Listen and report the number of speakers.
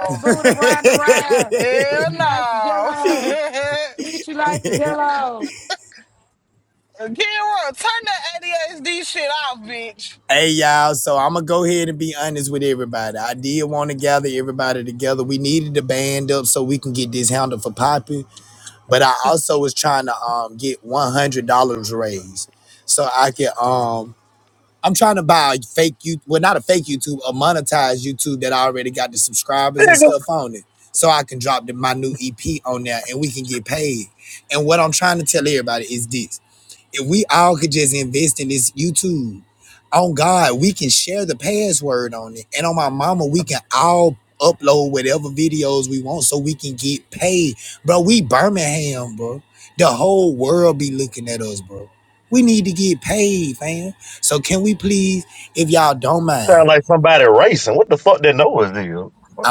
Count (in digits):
4